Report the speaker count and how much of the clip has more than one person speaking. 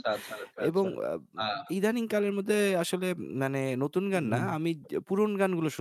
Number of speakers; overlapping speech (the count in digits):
2, about 12%